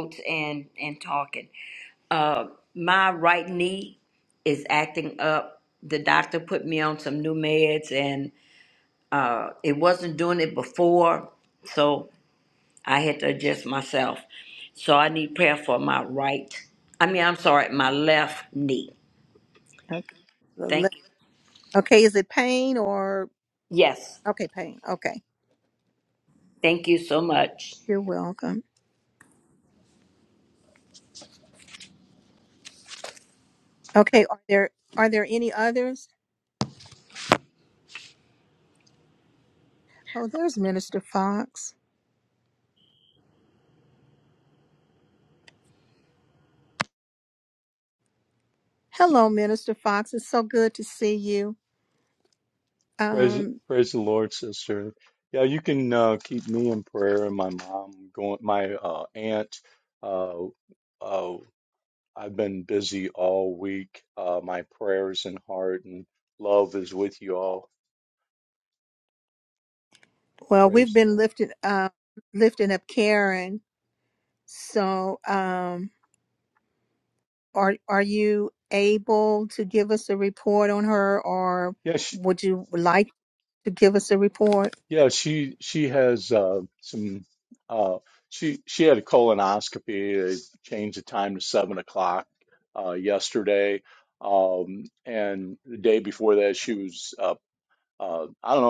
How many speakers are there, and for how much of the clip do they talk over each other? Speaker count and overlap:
3, about 1%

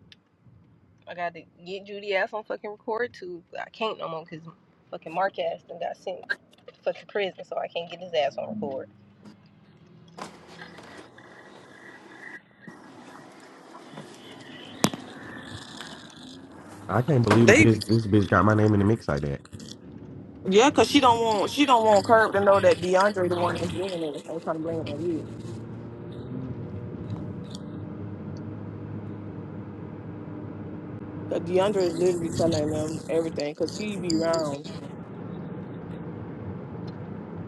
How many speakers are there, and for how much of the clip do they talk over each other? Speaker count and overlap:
3, about 1%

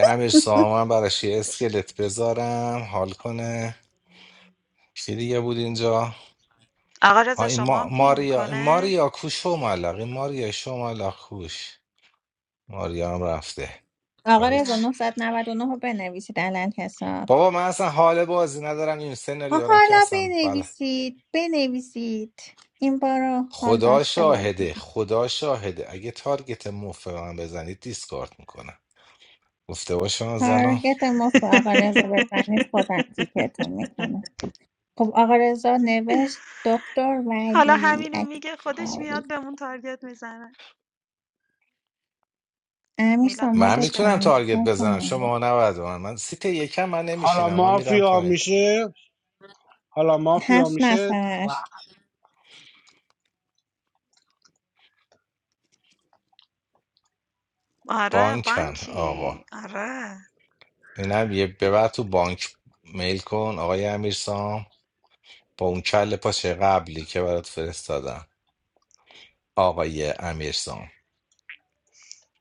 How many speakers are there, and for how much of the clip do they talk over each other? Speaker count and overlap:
4, about 17%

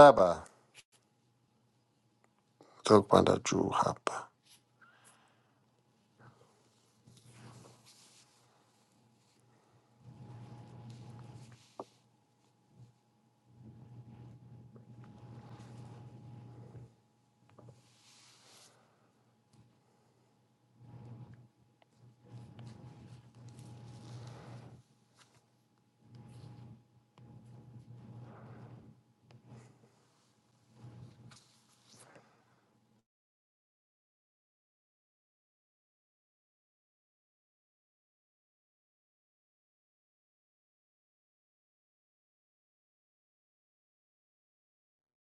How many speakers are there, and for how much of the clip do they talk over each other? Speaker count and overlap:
1, no overlap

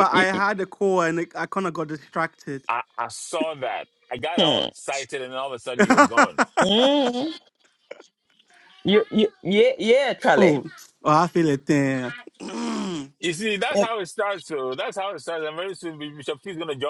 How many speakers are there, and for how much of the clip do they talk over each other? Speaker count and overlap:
3, about 9%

